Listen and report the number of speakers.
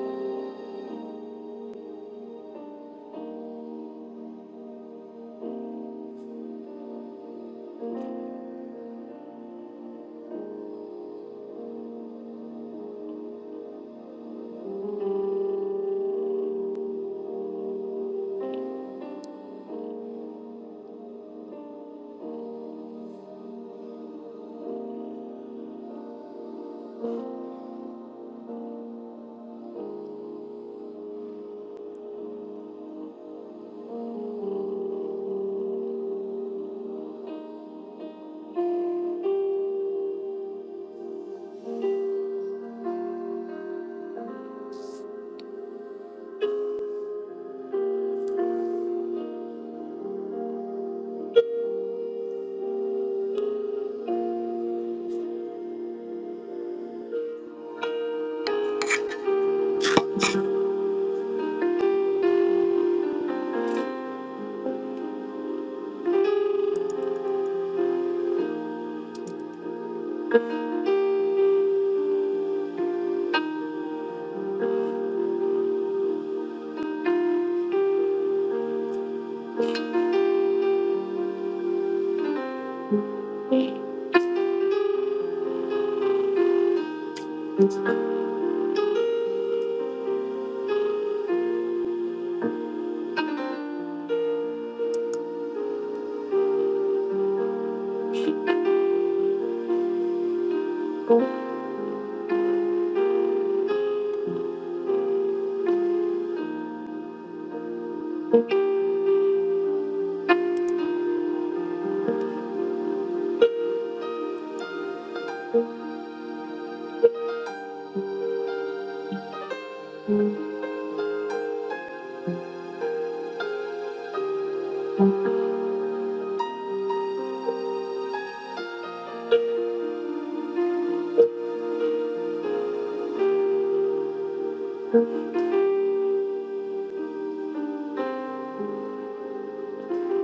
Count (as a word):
zero